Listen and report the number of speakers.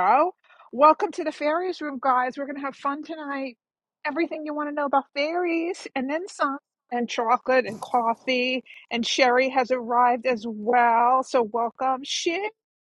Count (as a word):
one